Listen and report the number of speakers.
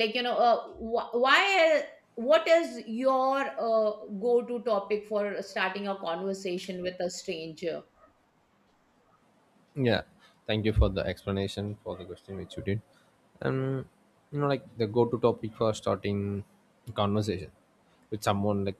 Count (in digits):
2